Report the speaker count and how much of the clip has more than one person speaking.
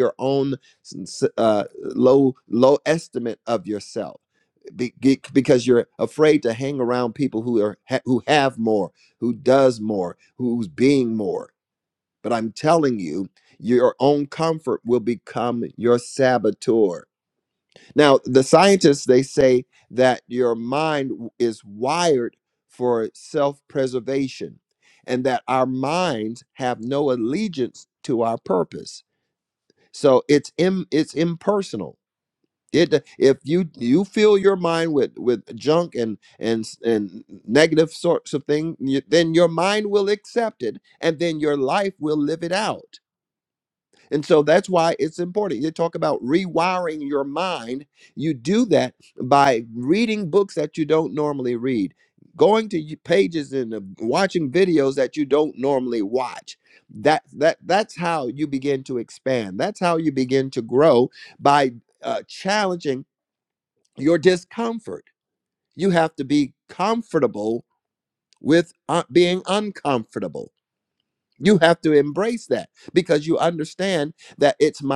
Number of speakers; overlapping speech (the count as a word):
one, no overlap